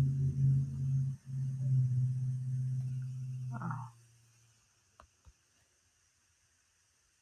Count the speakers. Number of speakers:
zero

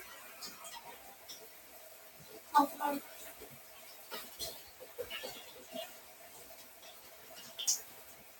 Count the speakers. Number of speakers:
zero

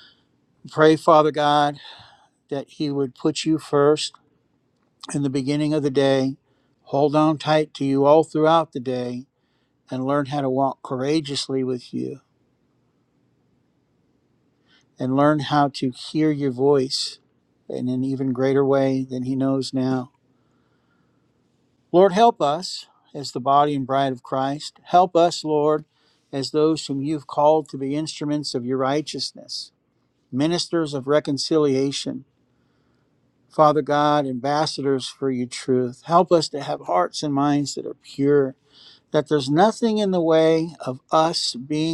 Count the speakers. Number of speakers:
one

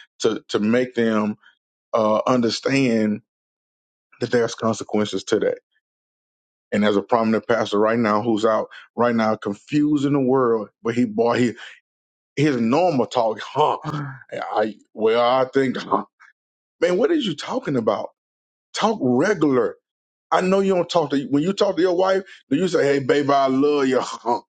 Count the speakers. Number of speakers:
one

